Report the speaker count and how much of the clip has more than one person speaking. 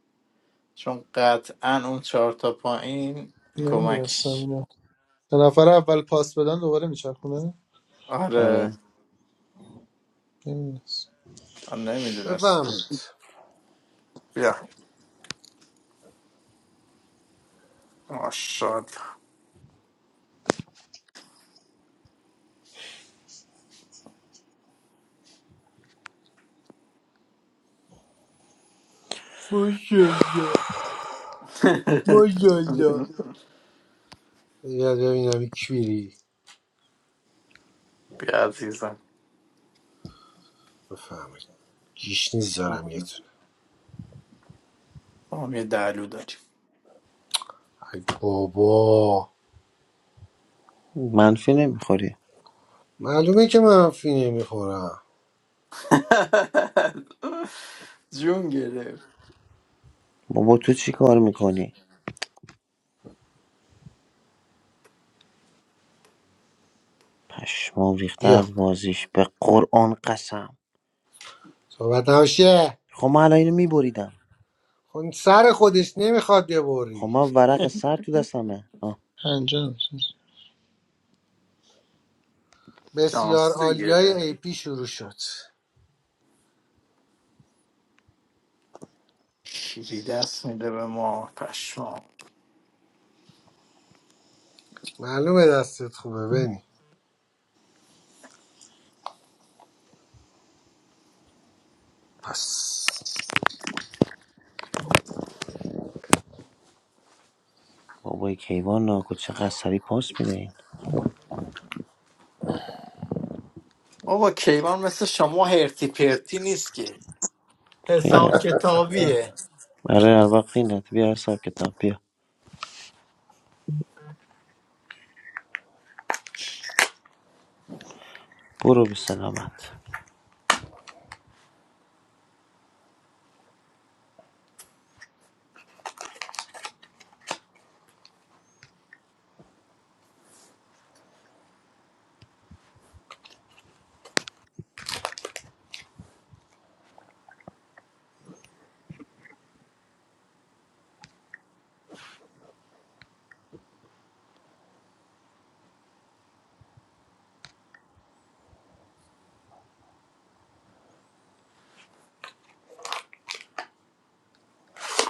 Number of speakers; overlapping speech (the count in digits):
4, about 2%